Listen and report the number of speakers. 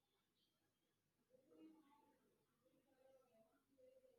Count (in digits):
0